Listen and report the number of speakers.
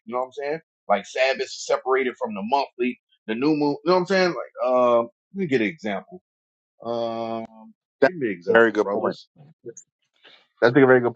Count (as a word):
two